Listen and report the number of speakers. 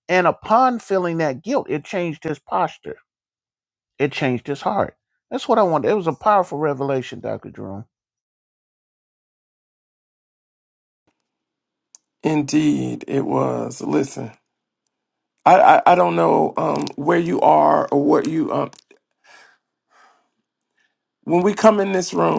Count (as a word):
two